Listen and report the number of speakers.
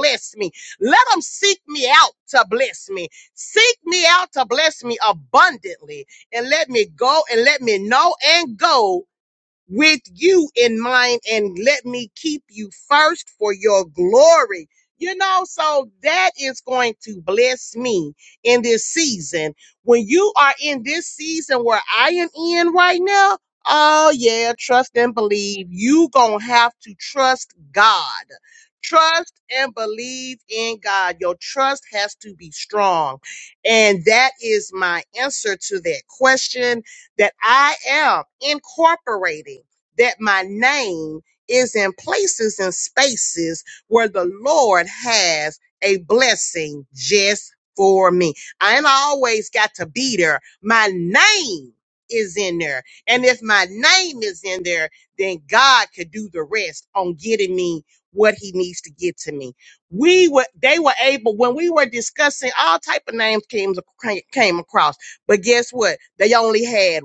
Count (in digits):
1